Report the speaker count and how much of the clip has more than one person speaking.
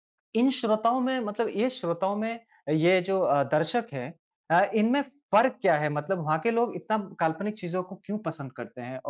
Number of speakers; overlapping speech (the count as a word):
one, no overlap